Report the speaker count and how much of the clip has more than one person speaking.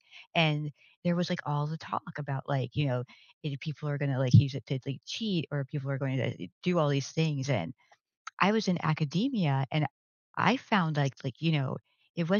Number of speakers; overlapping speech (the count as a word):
one, no overlap